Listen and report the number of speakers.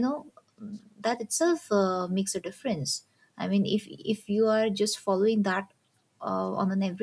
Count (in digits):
1